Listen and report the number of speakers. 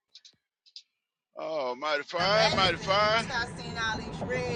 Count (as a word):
two